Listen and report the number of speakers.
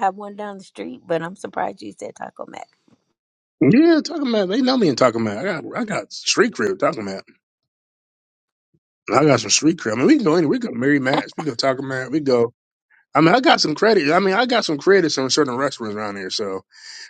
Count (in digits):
2